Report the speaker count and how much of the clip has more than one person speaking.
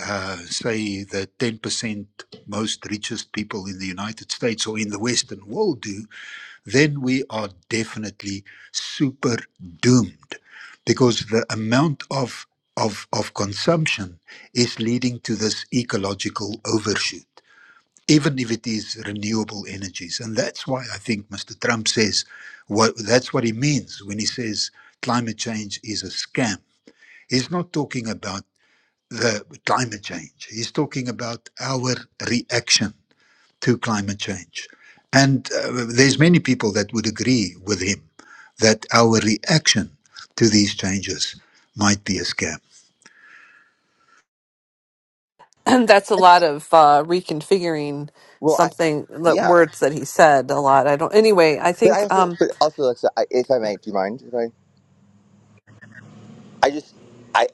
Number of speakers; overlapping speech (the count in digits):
3, about 2%